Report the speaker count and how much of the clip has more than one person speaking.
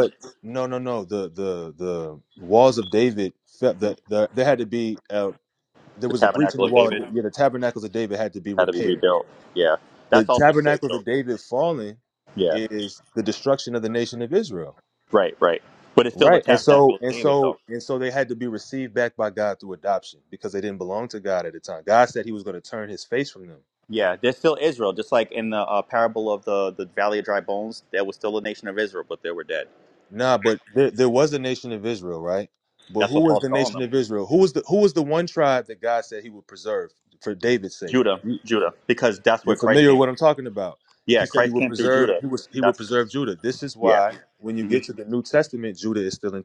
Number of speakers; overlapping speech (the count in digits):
2, about 16%